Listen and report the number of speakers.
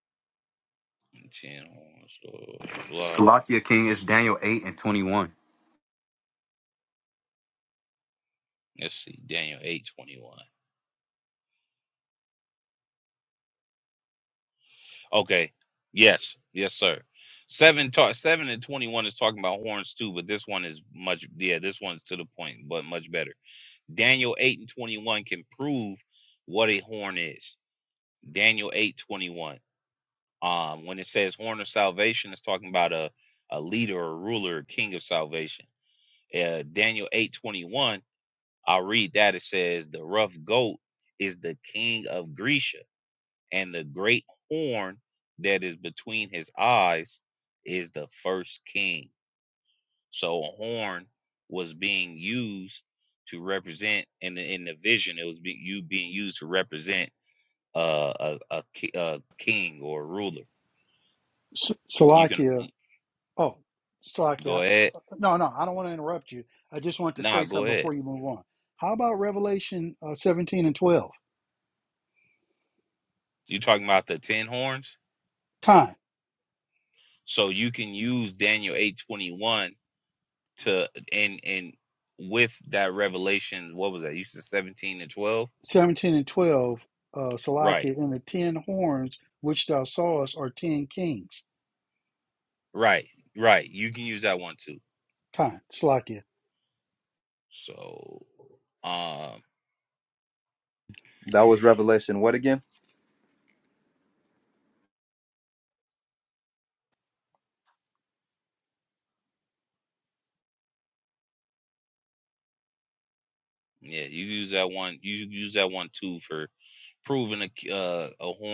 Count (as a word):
four